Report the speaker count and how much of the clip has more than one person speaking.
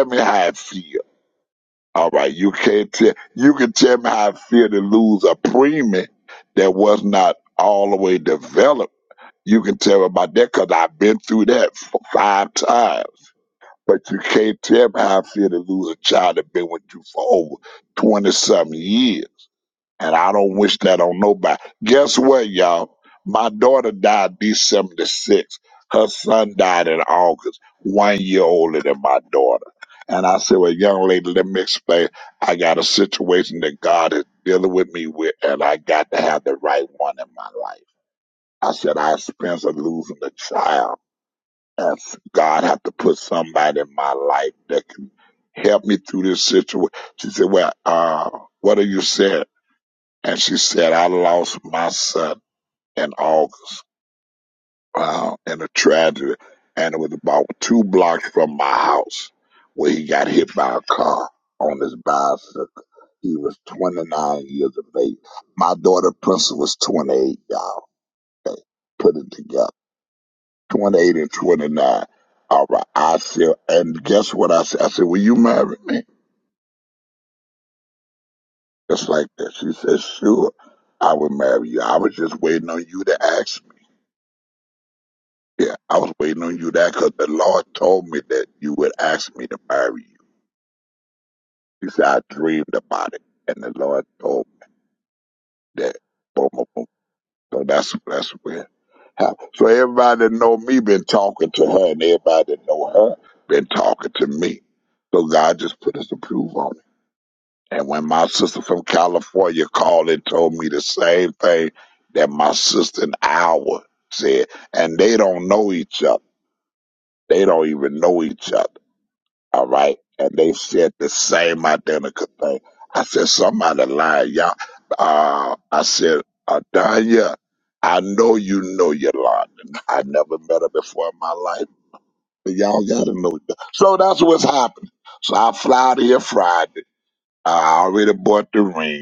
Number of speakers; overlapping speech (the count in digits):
1, no overlap